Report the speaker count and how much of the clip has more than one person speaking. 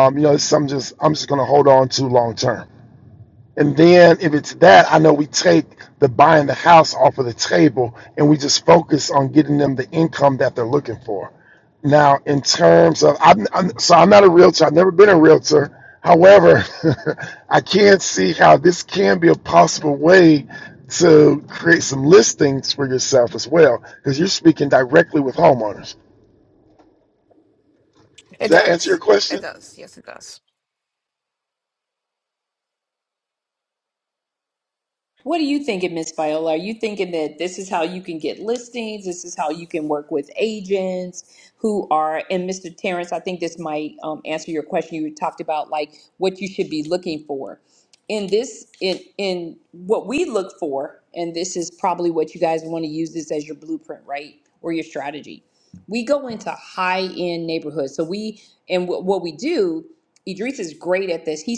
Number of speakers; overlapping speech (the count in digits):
3, about 1%